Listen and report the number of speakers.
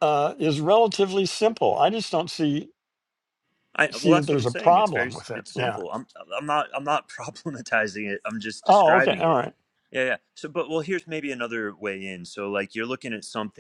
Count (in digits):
2